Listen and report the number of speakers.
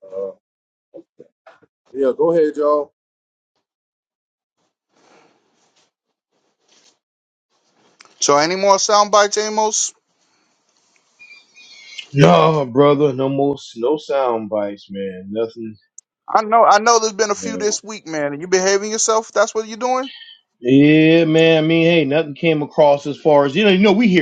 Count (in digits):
3